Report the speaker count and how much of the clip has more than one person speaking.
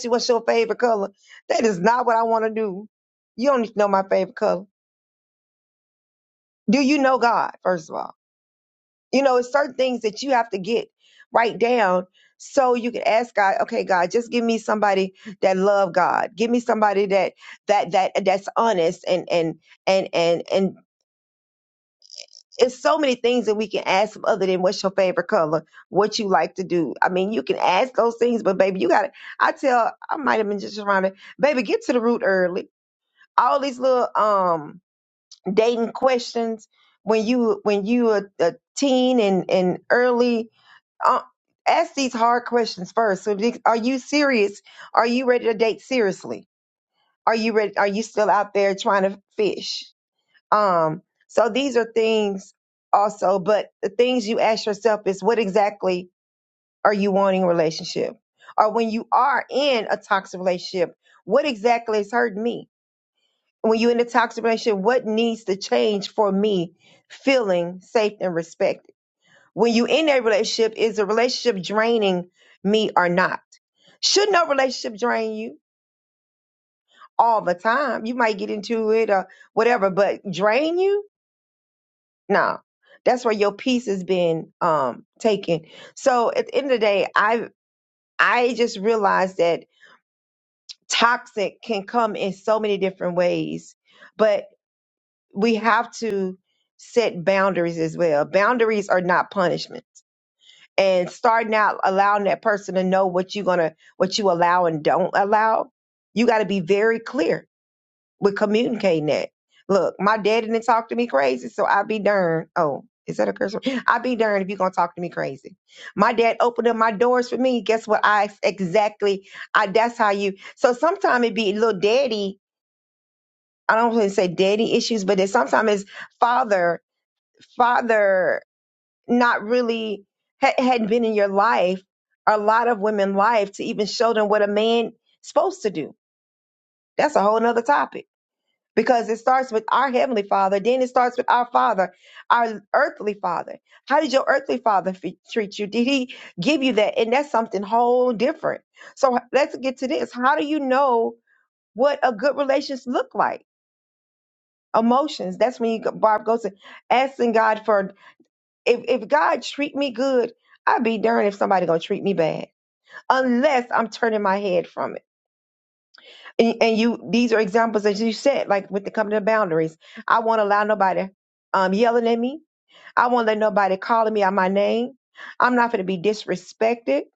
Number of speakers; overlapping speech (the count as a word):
one, no overlap